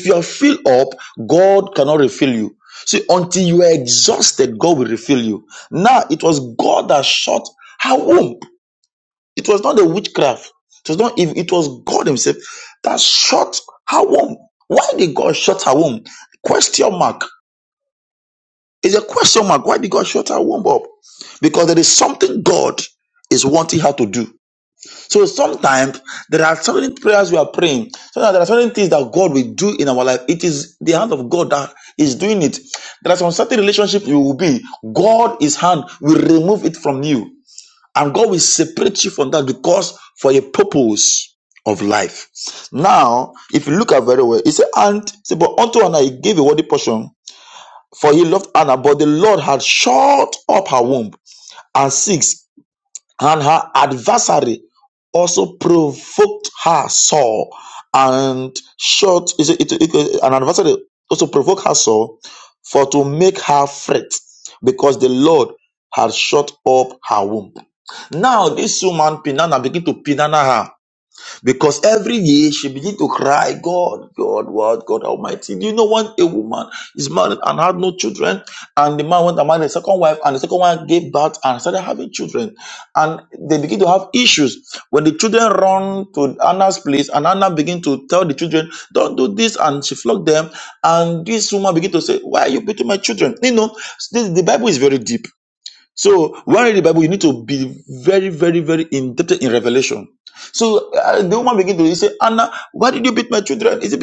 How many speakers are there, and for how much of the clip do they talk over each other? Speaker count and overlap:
one, no overlap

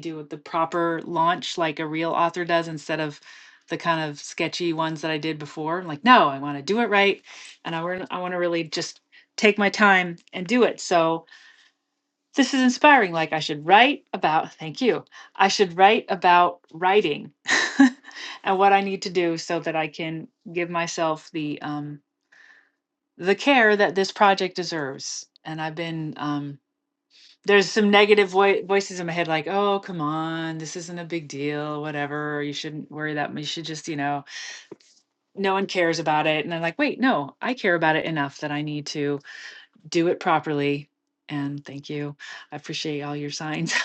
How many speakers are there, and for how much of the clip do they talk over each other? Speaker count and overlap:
one, no overlap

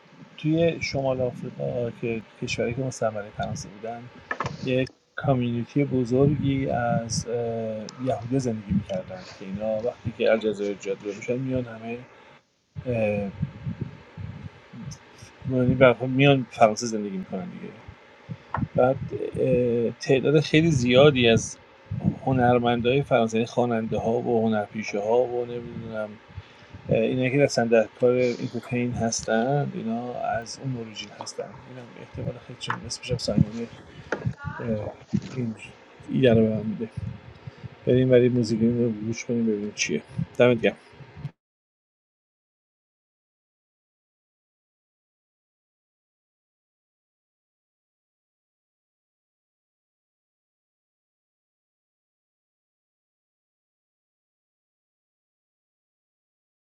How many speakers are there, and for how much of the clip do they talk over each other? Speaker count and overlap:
one, no overlap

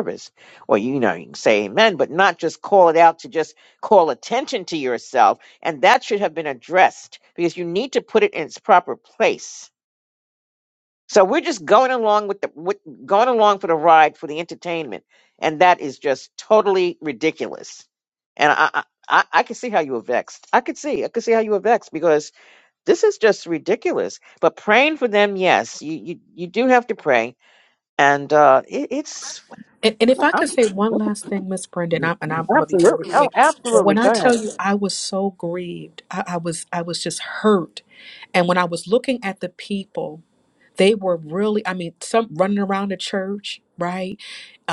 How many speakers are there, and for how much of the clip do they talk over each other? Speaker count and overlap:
two, about 4%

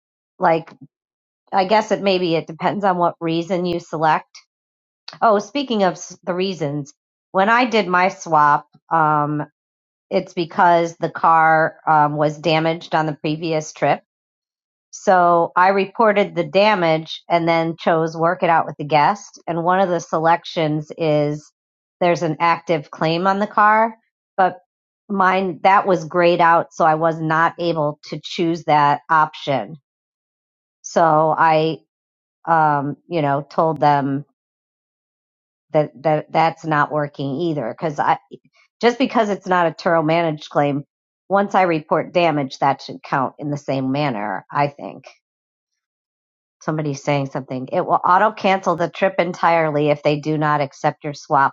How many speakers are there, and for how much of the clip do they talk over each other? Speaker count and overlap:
one, no overlap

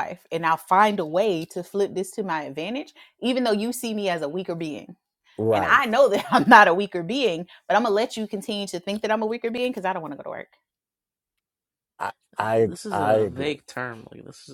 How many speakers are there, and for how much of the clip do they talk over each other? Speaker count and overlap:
three, about 9%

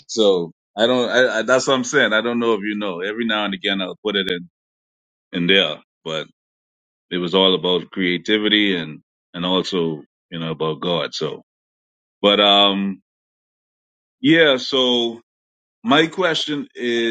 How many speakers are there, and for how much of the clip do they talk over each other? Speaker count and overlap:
one, no overlap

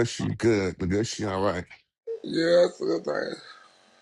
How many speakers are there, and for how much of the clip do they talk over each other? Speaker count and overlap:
two, no overlap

